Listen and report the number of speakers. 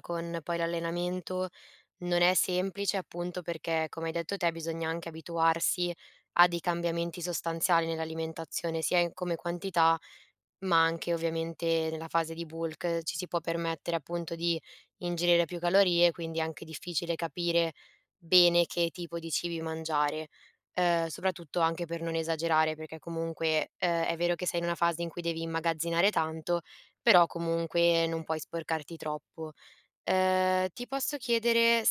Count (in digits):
1